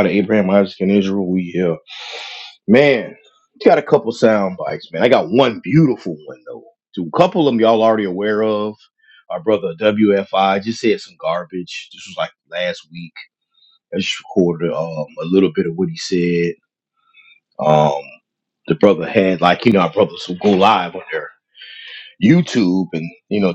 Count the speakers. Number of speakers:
one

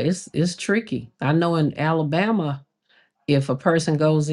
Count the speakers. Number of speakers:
one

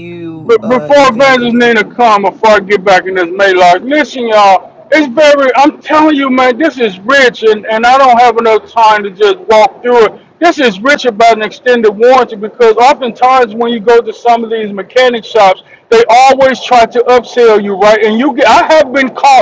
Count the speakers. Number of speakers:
two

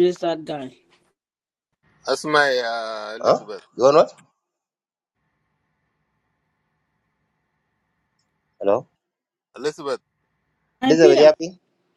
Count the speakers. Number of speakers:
three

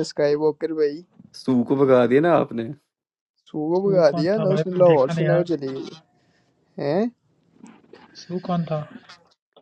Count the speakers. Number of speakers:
three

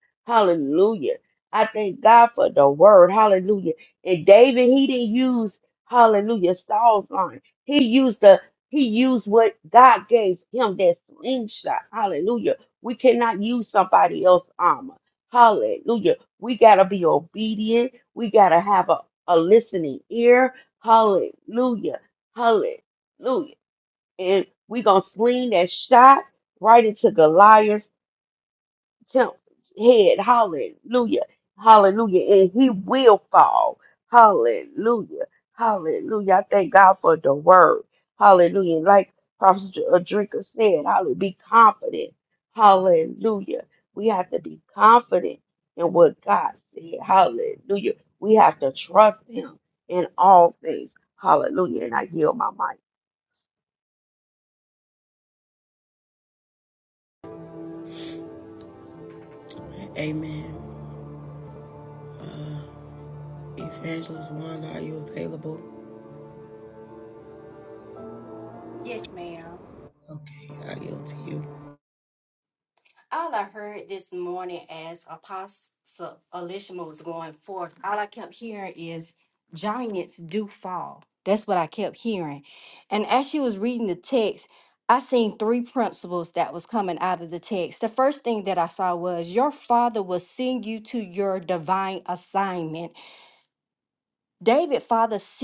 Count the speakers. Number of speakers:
three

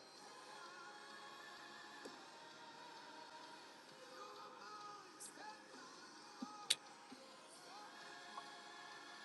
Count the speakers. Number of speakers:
zero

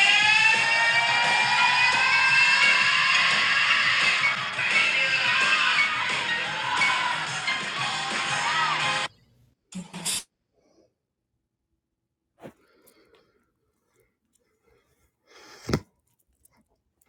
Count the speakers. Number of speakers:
zero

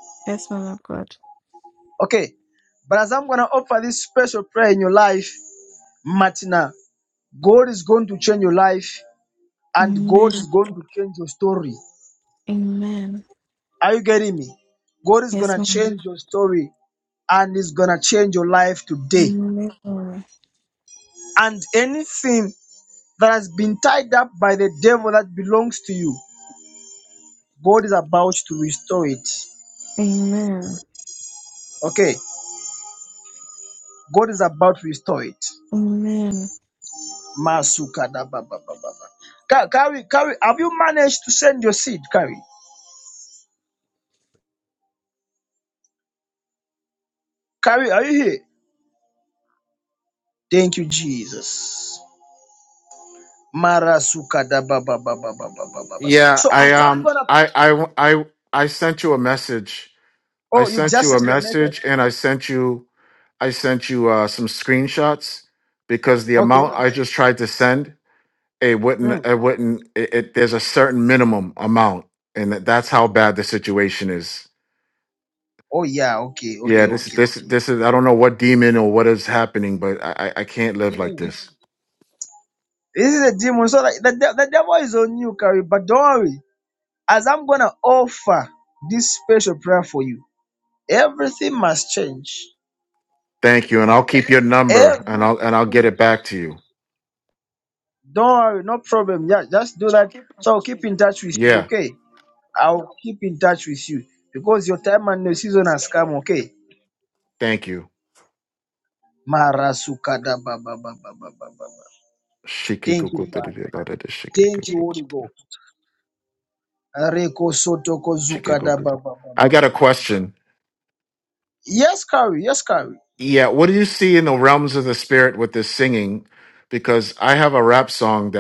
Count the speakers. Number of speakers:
three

